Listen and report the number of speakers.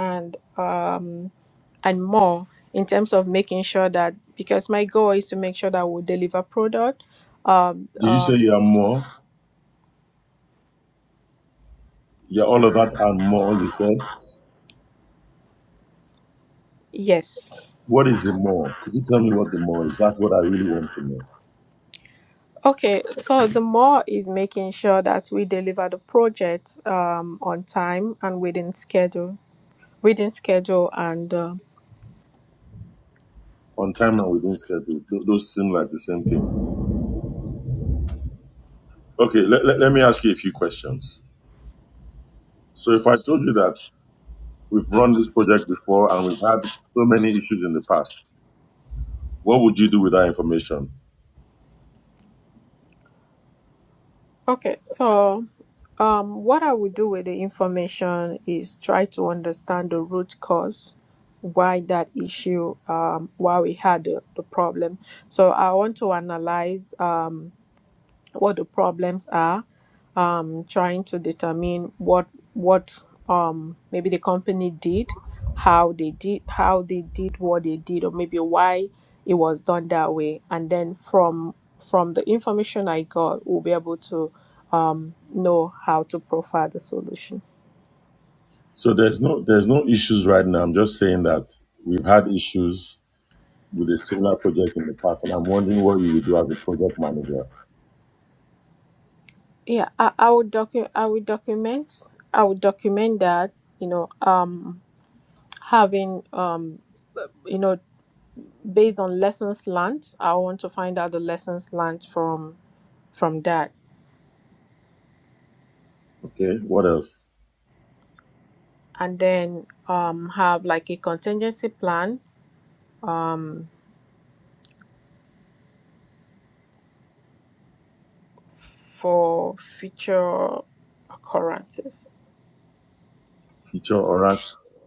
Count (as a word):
two